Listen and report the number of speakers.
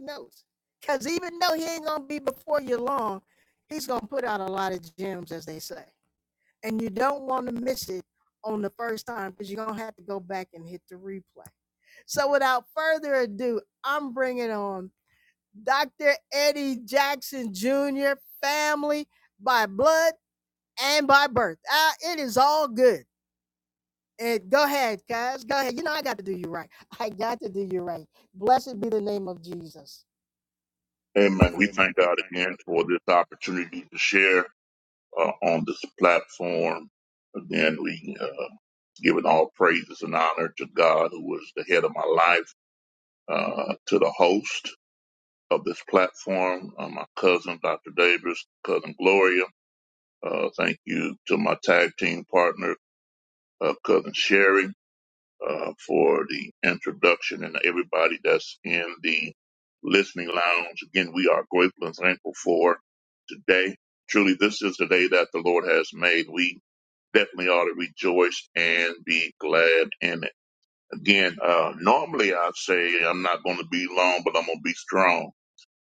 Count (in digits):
2